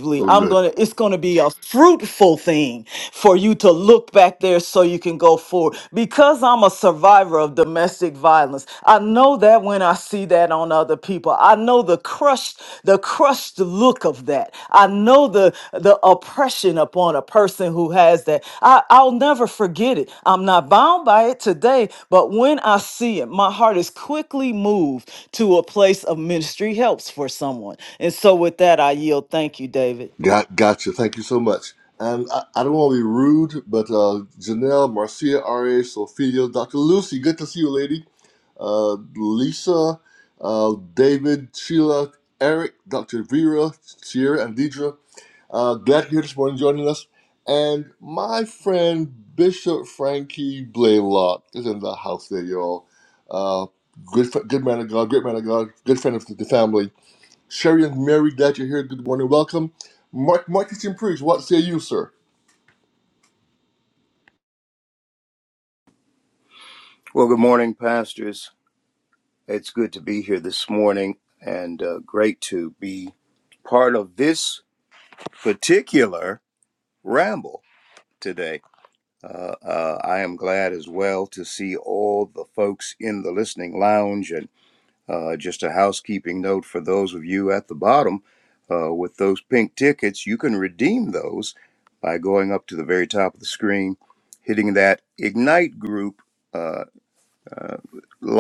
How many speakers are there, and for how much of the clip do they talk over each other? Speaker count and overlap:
three, under 1%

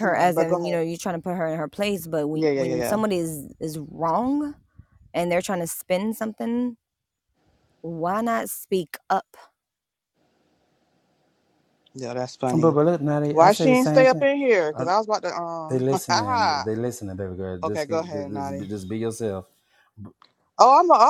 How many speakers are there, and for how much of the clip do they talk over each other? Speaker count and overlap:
three, about 23%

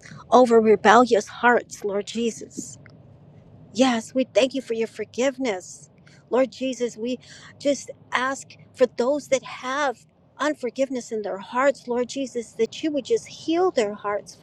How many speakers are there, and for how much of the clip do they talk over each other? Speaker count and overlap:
one, no overlap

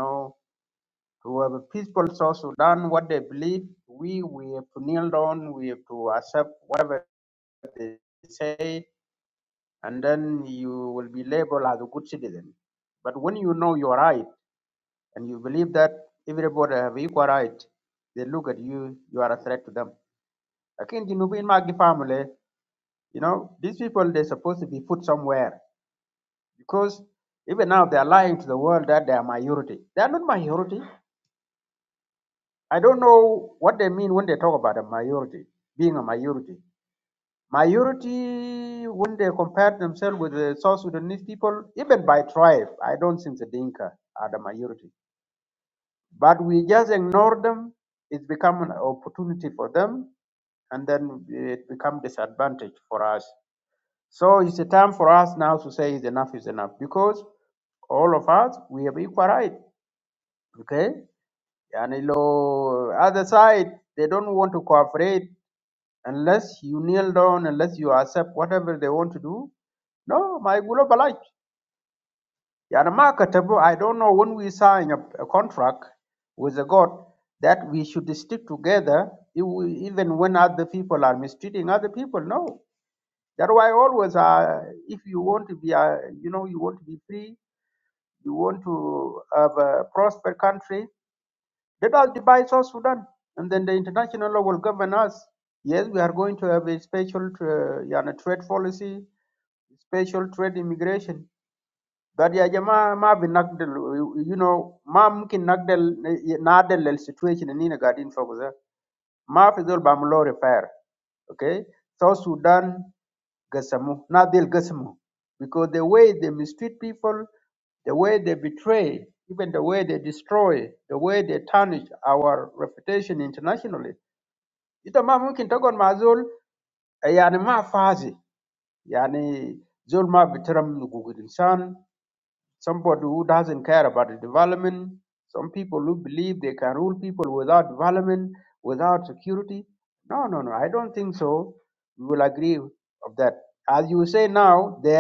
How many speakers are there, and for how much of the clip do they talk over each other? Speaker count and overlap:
one, no overlap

